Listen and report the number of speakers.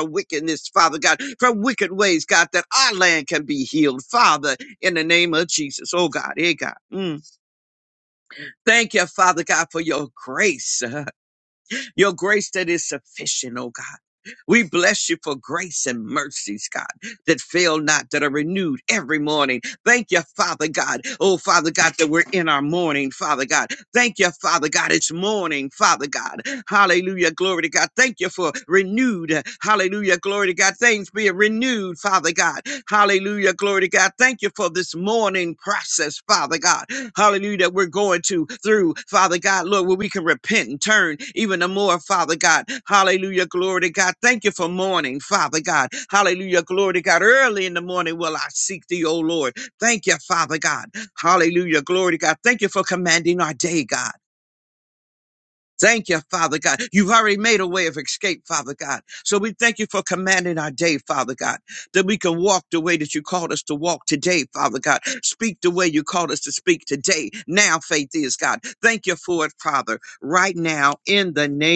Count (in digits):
1